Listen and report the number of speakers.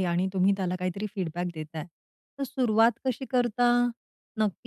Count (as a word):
one